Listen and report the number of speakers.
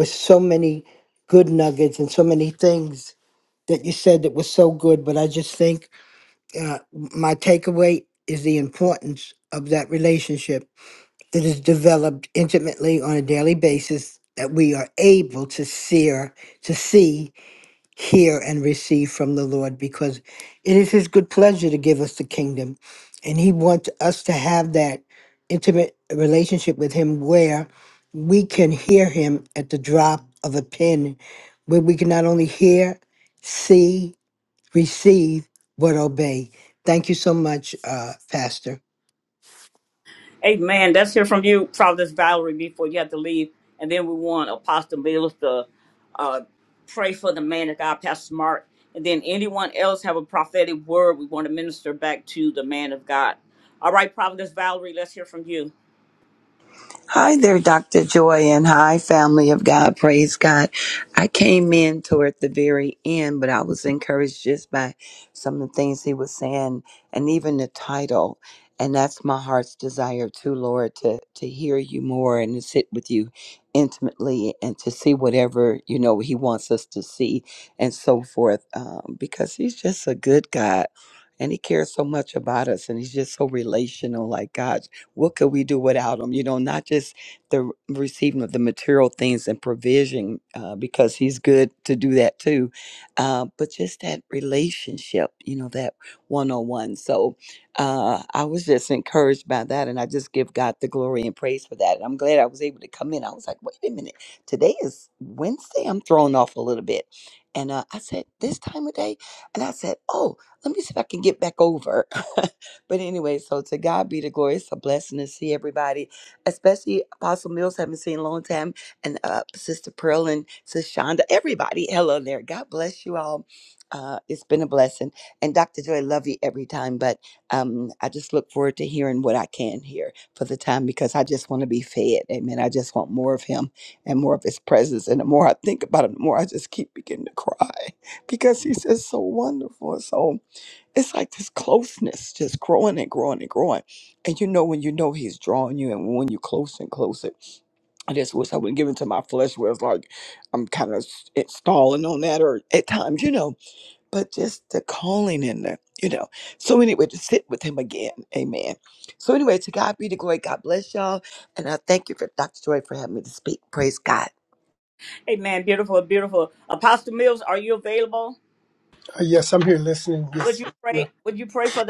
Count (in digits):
4